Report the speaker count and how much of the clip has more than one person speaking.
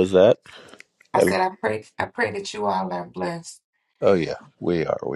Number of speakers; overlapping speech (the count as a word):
two, about 4%